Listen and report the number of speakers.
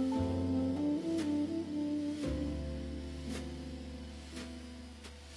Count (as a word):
zero